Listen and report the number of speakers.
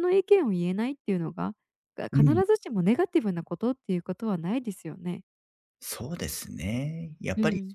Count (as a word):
two